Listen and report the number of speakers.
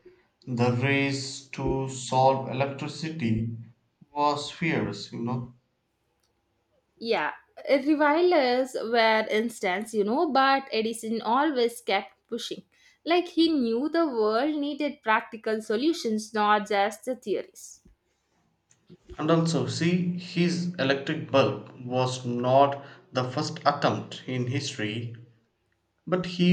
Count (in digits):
2